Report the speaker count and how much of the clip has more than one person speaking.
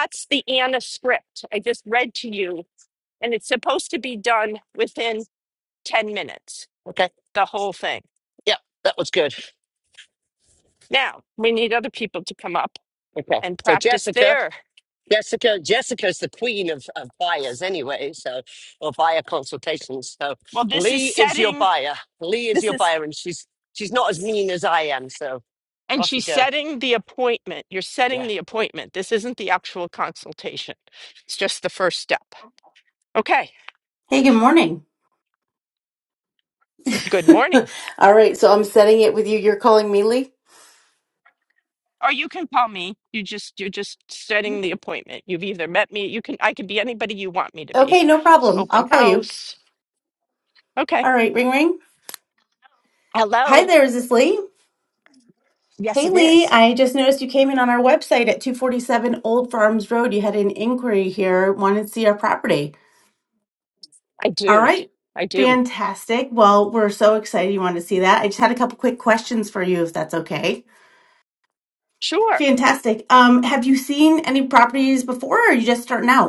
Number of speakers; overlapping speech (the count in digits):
3, about 7%